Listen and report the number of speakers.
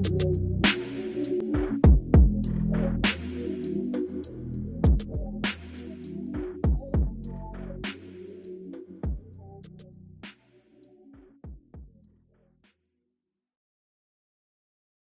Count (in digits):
0